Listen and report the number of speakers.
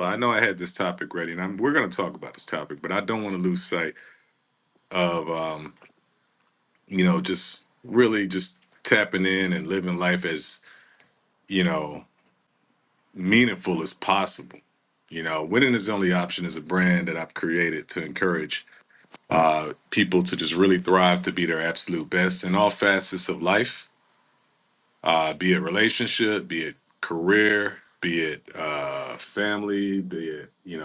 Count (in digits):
1